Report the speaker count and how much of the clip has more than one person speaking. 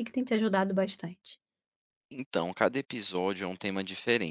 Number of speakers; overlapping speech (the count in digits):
2, no overlap